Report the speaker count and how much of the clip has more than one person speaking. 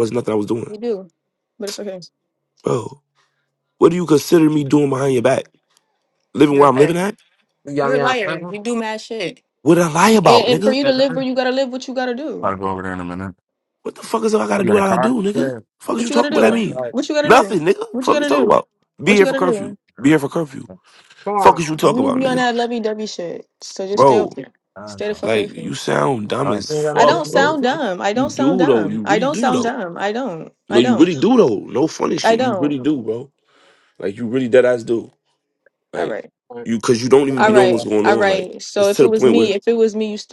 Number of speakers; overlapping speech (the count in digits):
3, about 34%